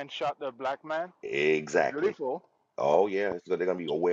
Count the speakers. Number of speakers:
2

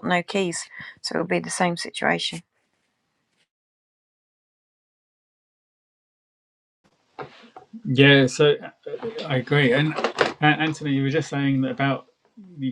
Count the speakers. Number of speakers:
2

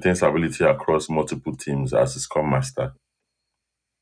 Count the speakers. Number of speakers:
1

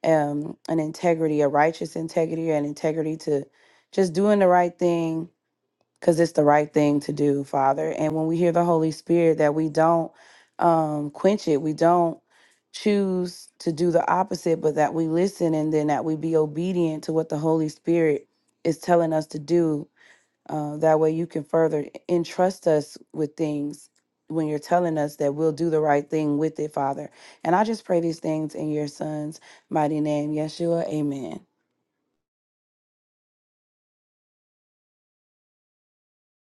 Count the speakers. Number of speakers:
1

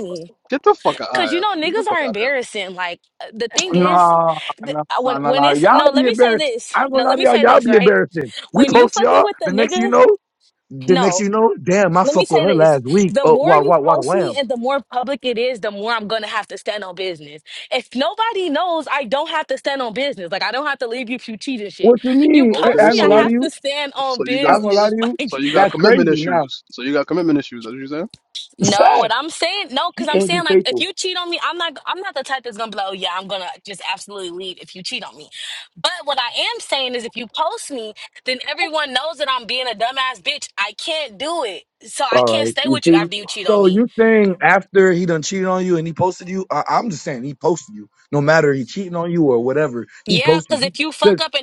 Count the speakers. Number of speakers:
3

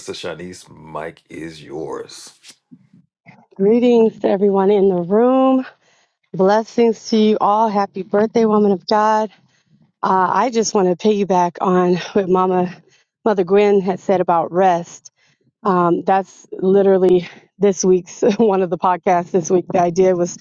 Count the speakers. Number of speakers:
2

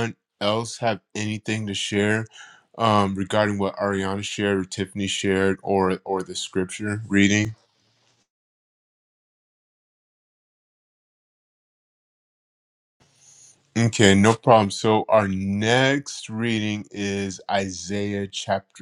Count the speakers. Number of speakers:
1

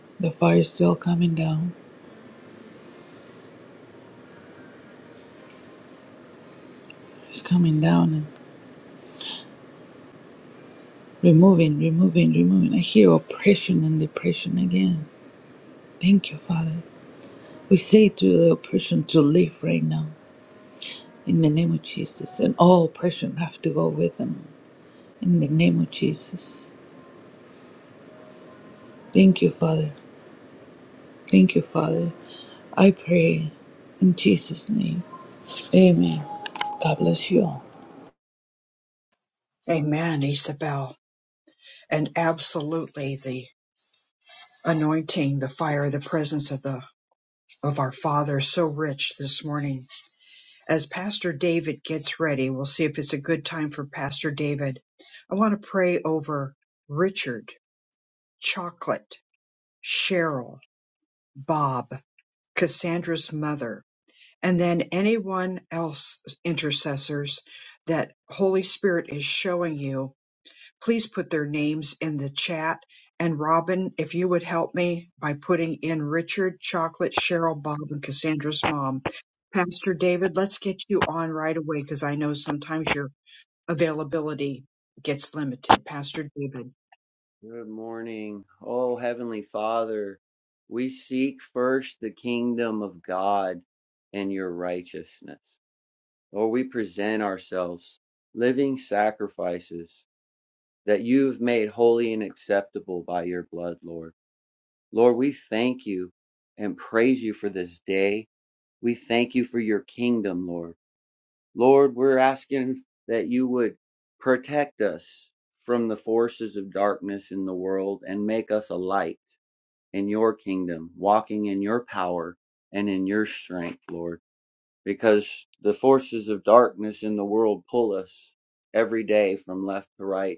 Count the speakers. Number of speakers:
3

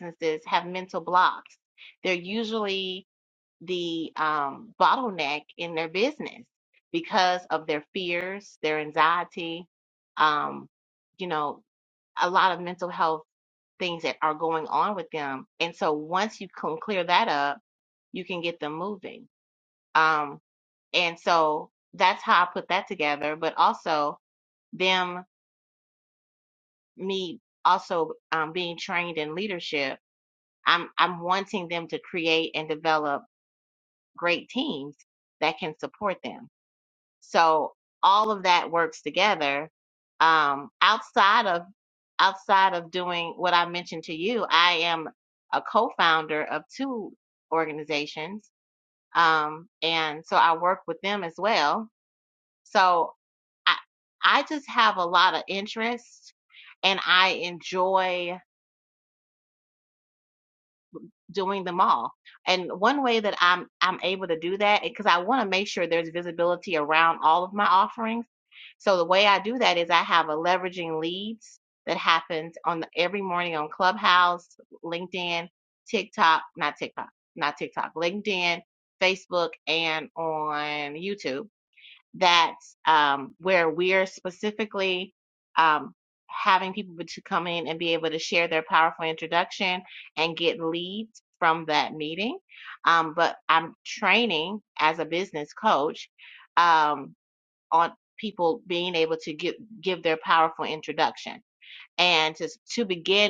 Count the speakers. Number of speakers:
1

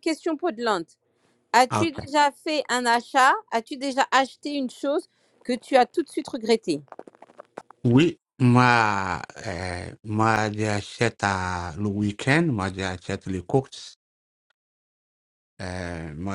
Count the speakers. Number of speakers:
2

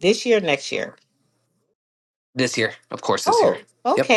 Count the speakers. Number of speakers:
2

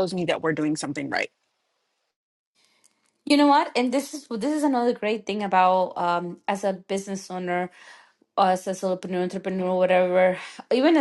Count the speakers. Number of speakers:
2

